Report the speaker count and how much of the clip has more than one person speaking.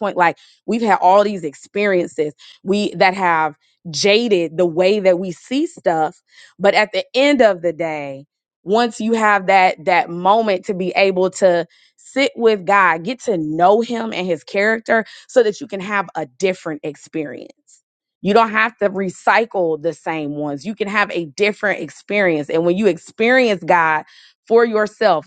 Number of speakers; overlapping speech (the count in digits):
1, no overlap